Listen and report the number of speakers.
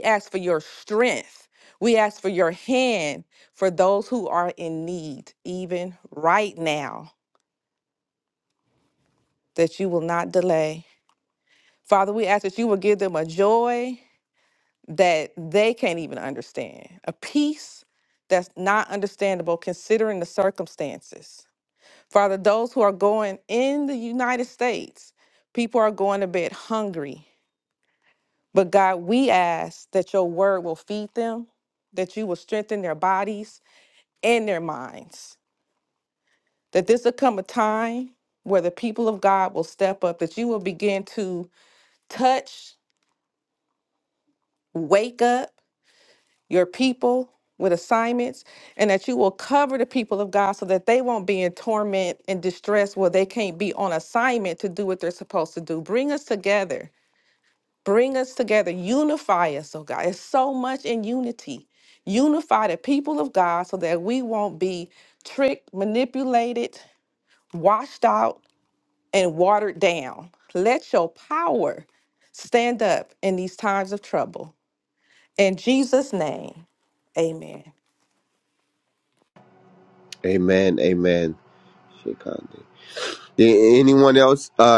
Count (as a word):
two